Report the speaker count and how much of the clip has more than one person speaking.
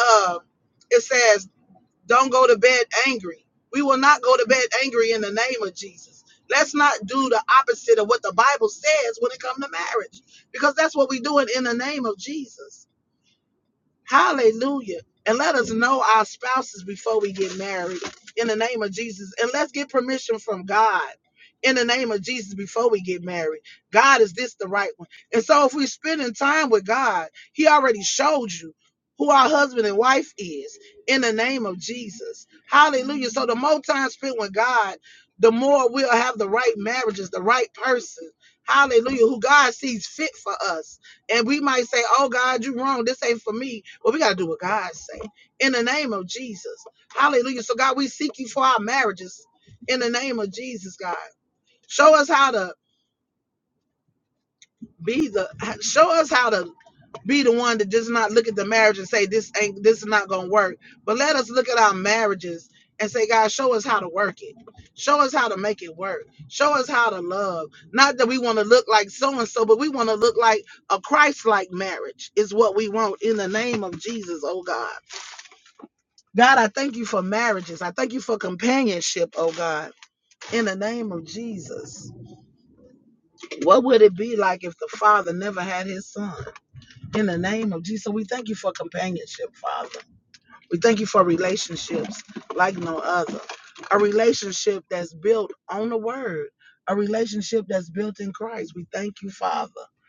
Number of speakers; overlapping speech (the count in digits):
1, no overlap